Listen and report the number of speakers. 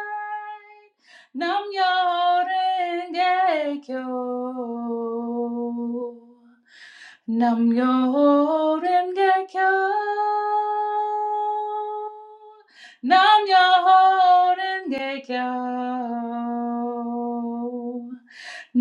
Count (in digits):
1